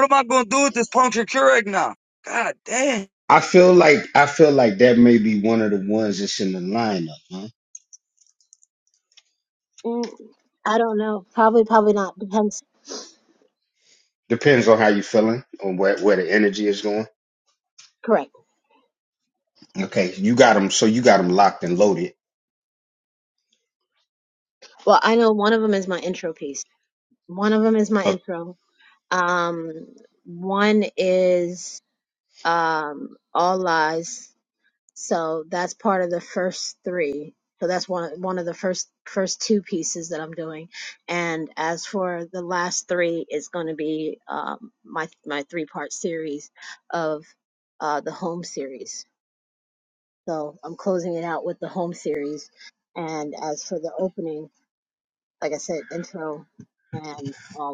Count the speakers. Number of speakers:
three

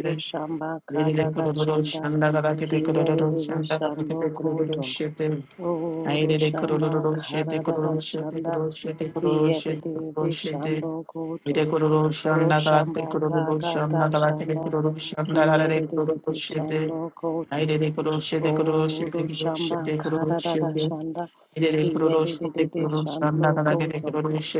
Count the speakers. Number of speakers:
two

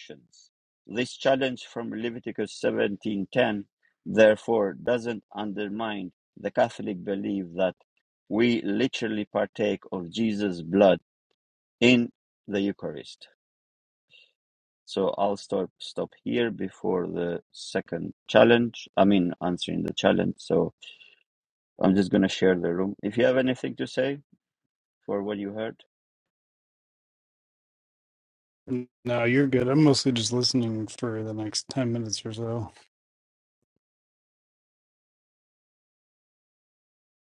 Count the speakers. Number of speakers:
two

